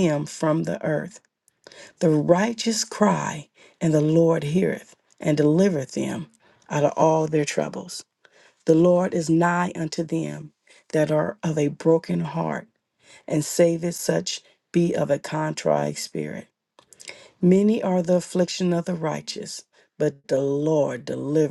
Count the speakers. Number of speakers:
one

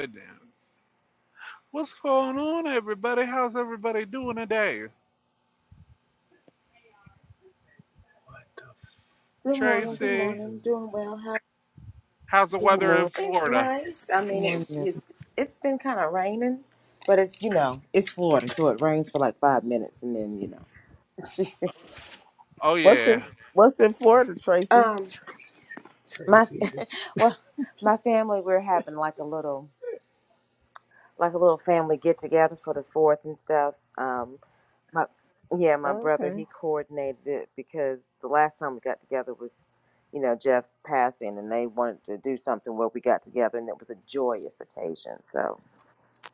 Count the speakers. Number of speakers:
four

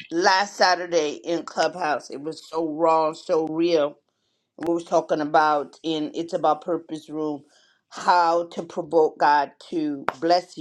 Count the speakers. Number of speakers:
one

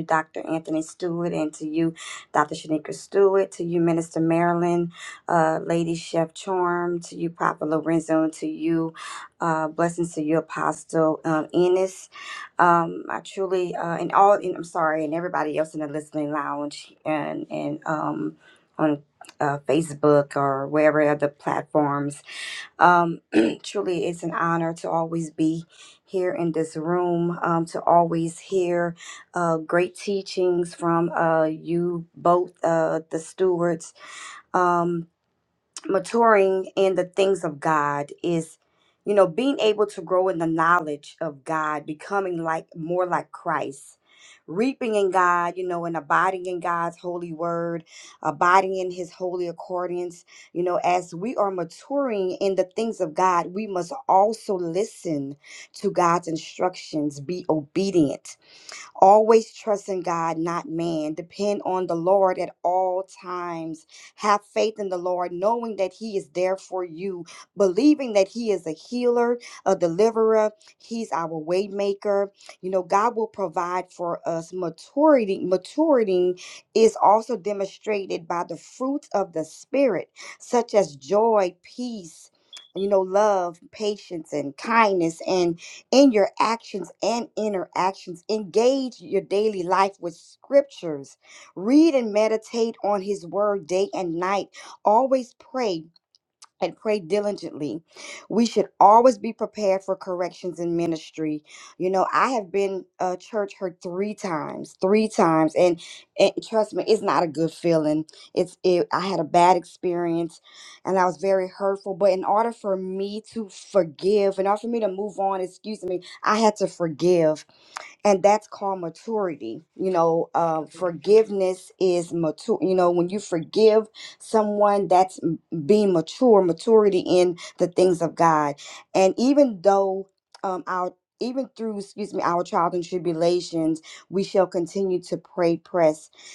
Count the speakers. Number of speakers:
one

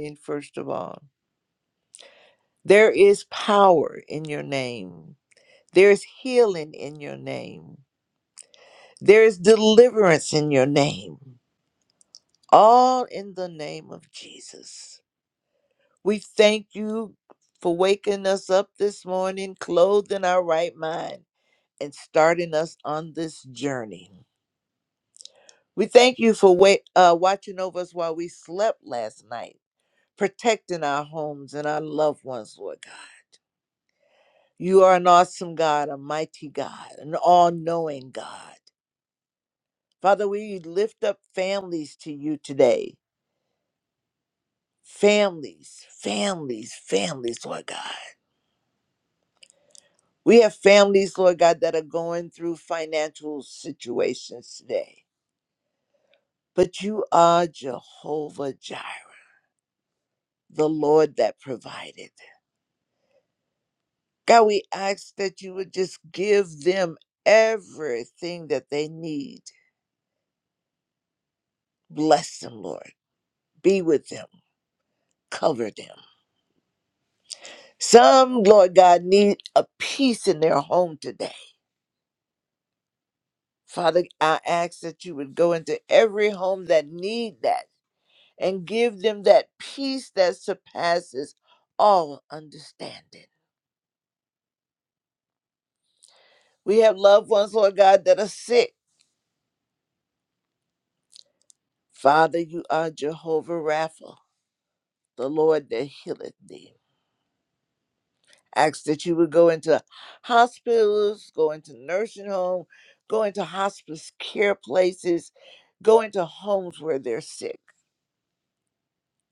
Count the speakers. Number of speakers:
one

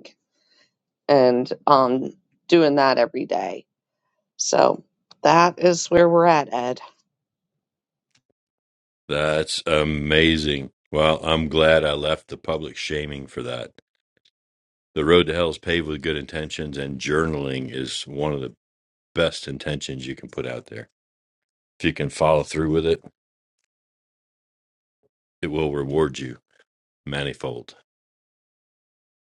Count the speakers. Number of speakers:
two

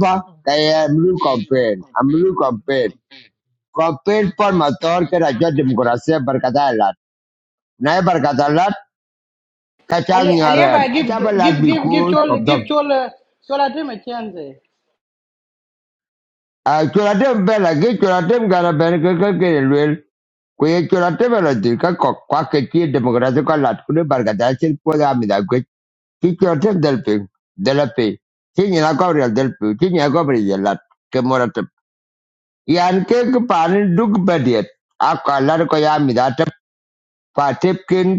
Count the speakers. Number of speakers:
two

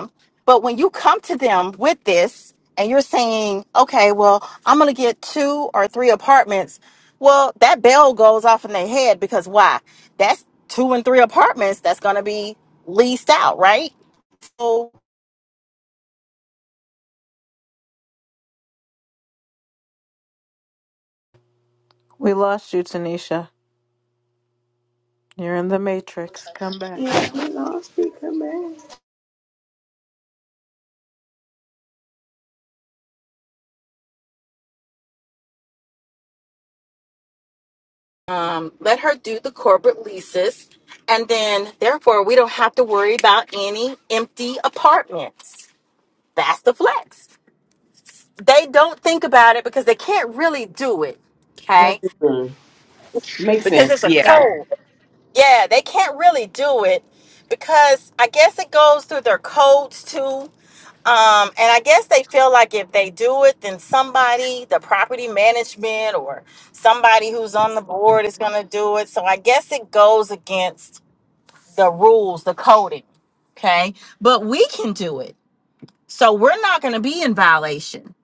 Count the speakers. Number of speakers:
three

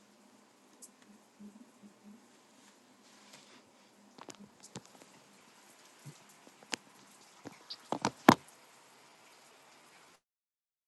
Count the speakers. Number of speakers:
zero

